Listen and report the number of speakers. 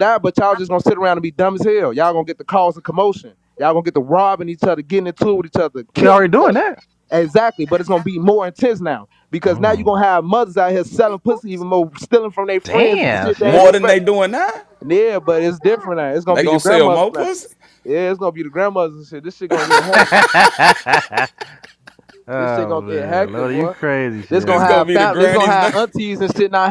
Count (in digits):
3